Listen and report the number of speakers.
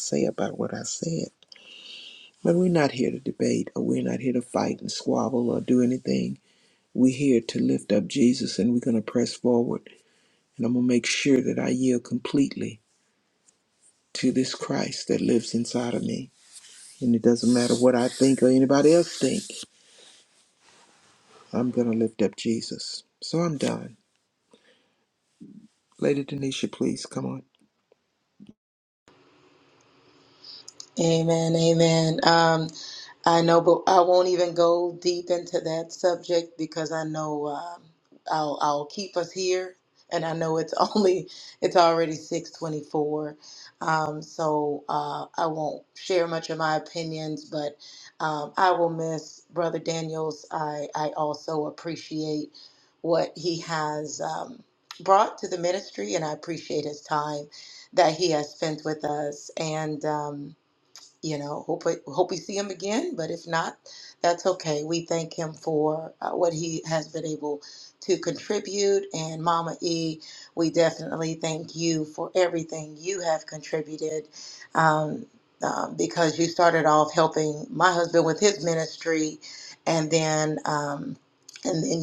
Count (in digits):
2